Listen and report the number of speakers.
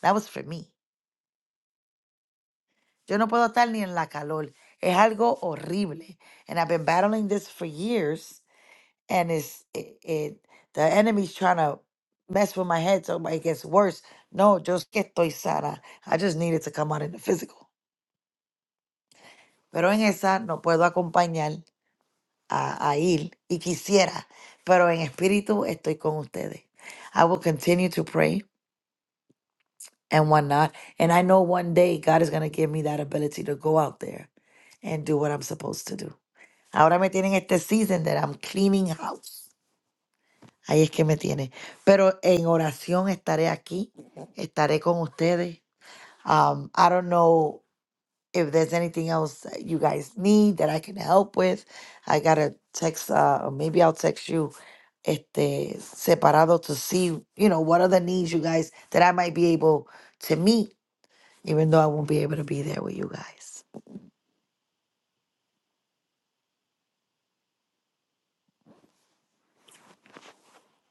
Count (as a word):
one